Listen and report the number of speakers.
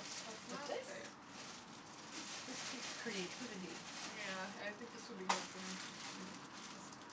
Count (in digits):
2